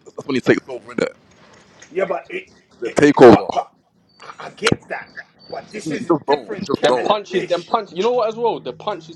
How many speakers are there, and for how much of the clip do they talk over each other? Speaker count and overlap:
3, about 28%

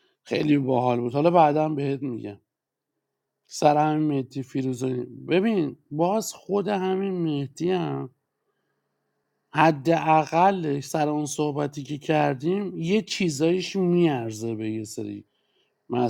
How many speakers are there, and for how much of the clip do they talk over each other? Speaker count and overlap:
1, no overlap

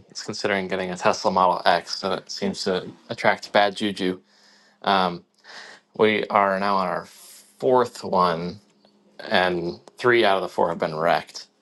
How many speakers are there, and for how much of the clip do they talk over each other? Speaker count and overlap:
1, no overlap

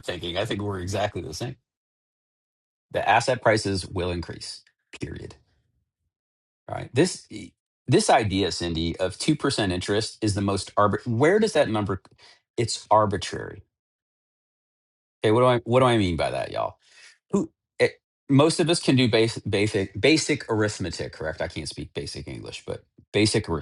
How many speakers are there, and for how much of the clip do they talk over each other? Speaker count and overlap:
1, no overlap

